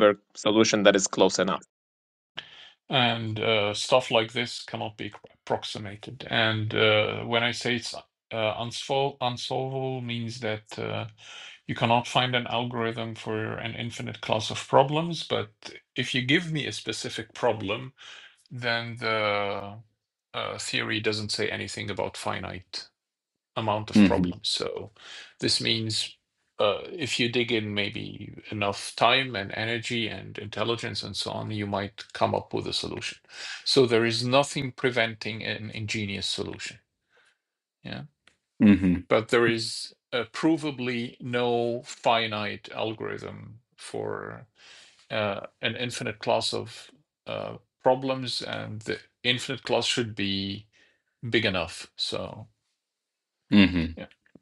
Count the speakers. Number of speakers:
three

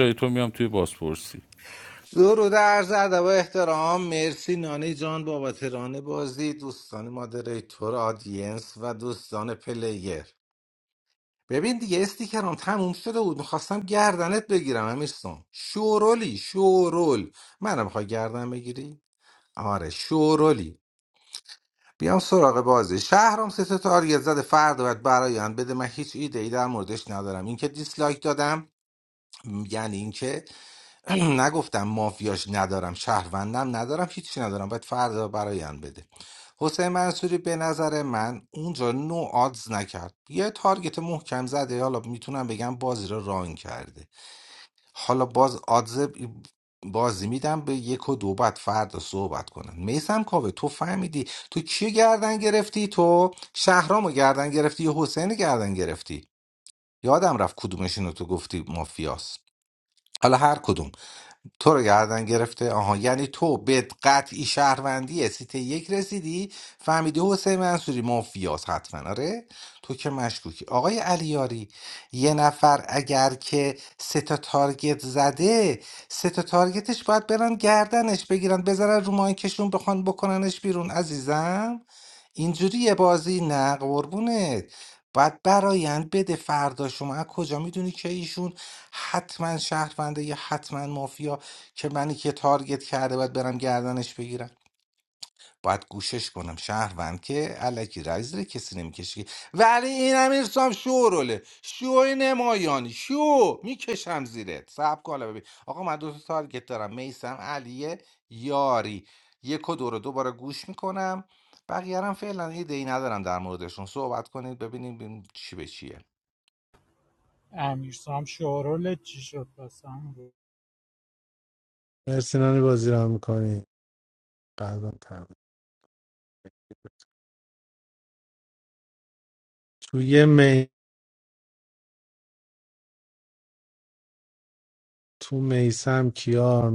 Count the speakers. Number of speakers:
four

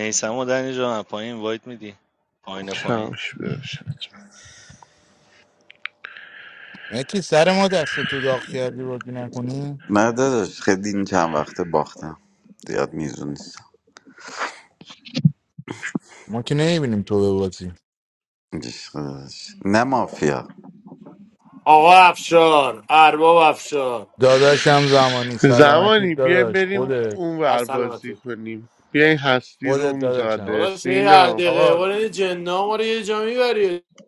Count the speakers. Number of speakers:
five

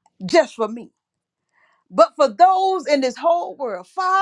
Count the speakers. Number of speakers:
one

